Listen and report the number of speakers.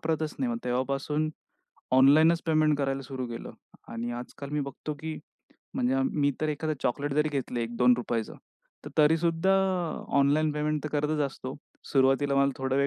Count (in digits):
1